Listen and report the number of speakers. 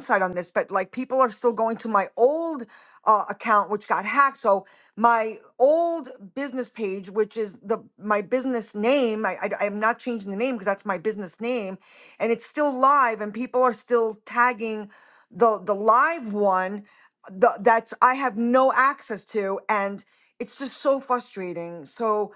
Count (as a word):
one